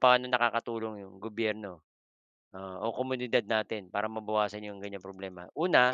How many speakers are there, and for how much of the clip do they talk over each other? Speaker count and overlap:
1, no overlap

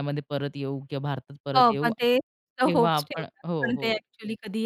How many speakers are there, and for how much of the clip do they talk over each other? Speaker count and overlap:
2, about 30%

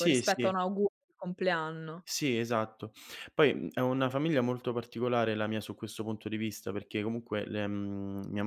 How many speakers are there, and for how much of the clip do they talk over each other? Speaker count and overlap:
2, about 6%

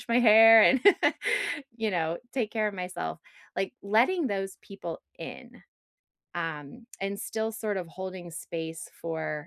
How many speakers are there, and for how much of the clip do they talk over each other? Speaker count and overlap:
1, no overlap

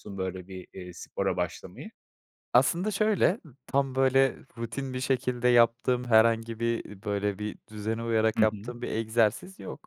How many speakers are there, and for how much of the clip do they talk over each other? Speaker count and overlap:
2, about 3%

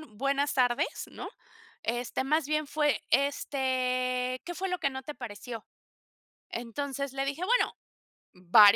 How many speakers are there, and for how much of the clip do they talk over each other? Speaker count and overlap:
1, no overlap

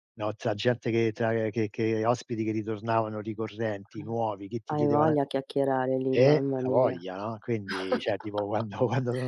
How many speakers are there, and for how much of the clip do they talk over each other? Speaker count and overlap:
2, about 15%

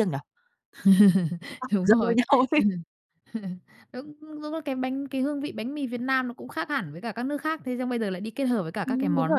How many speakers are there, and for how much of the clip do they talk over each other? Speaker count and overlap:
2, about 10%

